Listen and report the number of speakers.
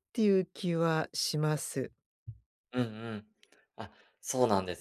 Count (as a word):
two